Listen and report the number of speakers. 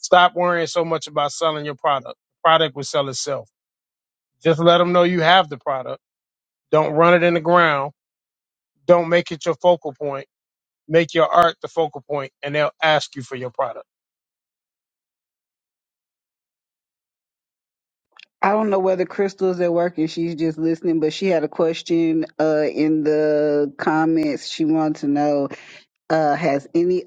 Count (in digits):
2